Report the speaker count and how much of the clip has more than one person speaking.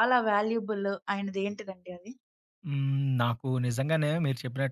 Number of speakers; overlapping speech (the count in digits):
2, no overlap